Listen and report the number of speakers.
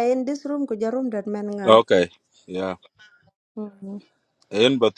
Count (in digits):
2